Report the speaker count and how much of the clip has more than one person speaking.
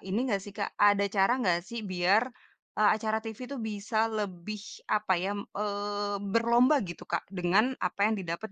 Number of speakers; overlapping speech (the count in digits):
1, no overlap